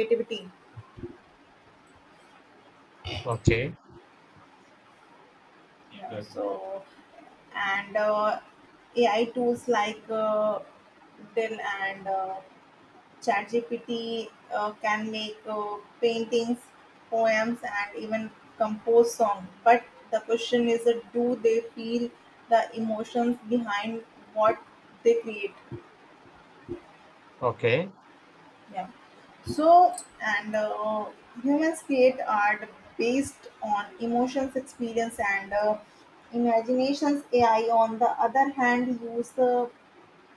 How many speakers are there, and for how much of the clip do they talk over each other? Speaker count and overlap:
2, under 1%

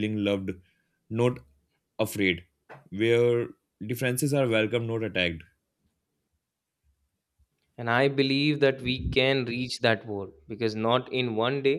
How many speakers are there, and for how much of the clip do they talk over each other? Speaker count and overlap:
2, no overlap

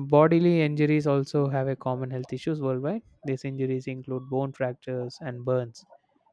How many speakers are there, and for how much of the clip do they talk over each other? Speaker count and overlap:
1, no overlap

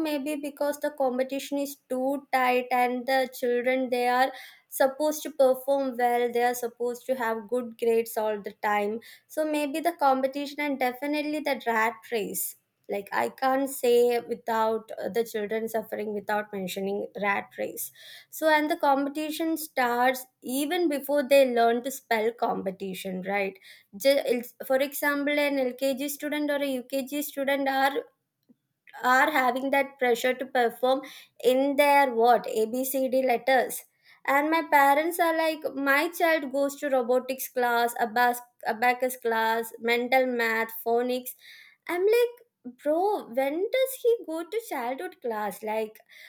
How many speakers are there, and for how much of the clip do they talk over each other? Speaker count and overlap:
1, no overlap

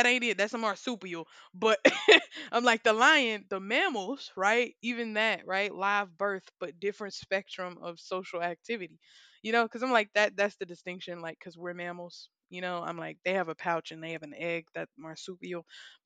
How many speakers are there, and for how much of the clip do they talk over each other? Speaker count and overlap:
1, no overlap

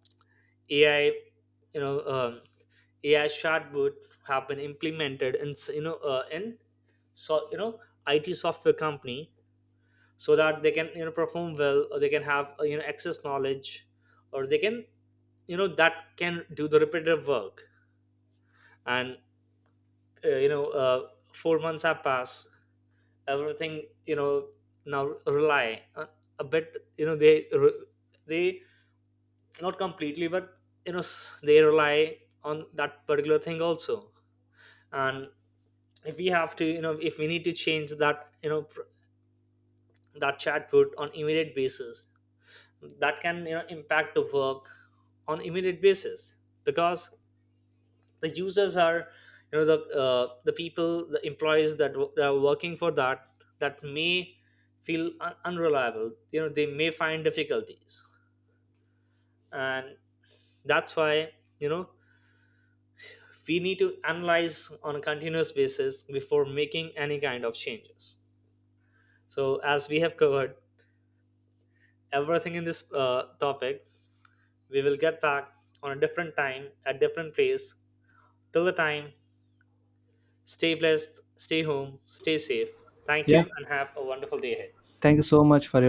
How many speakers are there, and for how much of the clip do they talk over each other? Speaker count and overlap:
2, under 1%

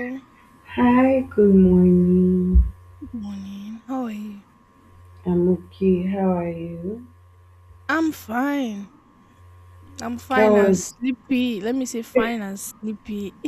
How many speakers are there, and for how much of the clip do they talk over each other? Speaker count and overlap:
2, about 4%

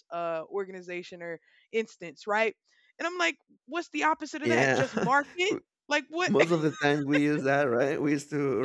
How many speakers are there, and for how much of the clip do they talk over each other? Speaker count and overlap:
2, about 6%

